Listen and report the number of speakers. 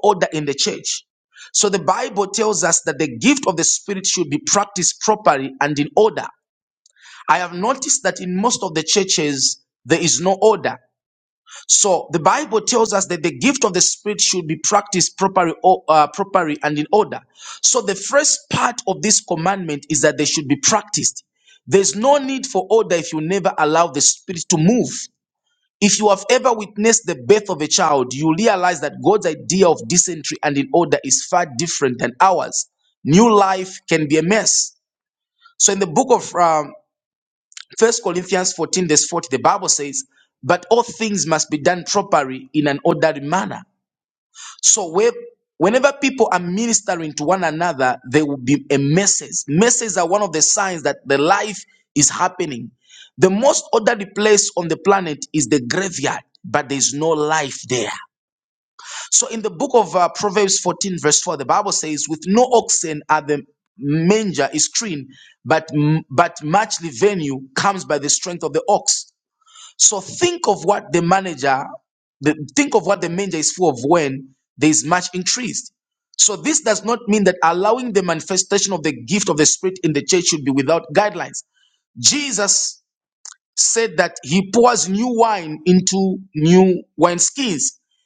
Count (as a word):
one